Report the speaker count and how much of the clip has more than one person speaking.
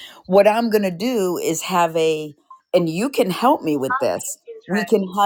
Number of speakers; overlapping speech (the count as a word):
one, no overlap